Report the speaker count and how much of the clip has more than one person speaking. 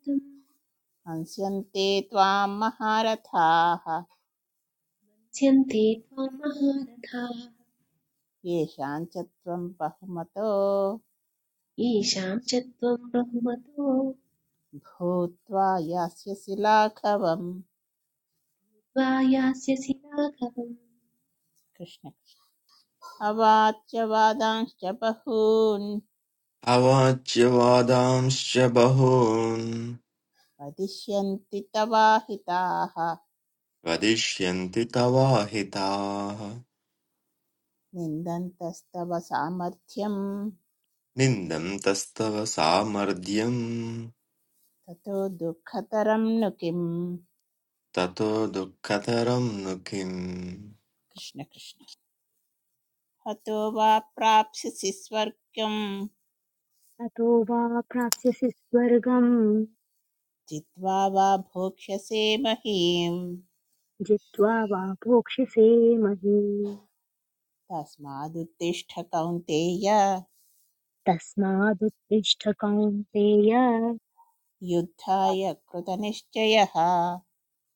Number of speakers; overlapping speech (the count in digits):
4, no overlap